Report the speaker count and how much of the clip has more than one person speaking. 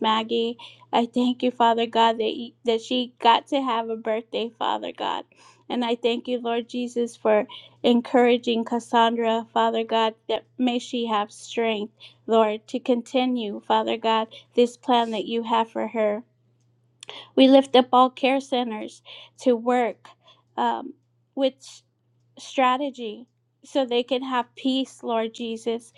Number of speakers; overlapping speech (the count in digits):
1, no overlap